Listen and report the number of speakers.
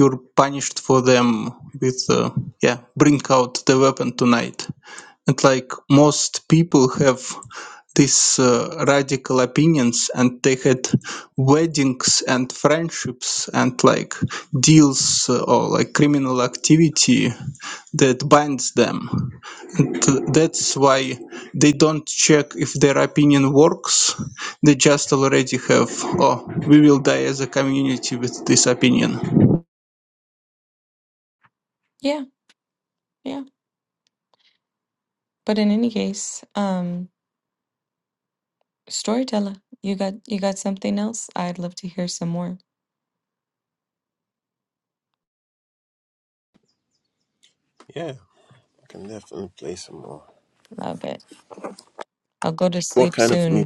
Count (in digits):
3